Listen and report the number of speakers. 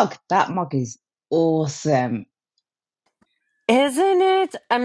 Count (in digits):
2